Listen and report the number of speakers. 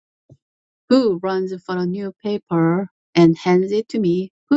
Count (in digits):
1